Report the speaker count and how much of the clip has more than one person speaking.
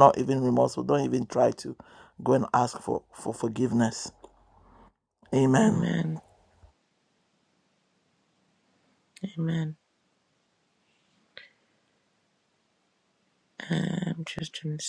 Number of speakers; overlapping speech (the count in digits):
2, about 2%